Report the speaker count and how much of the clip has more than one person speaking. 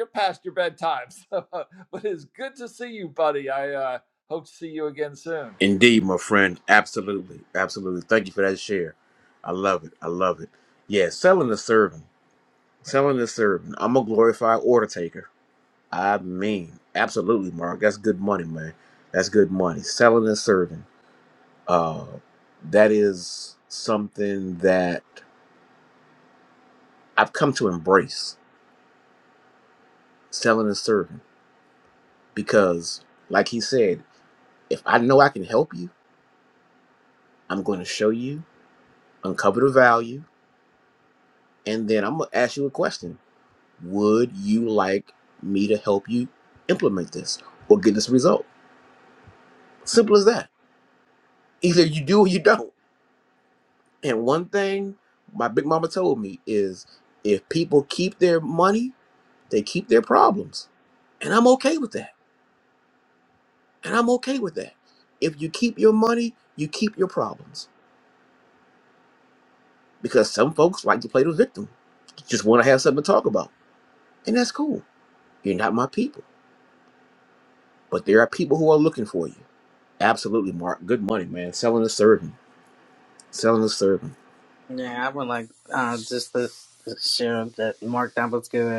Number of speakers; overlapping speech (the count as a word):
three, no overlap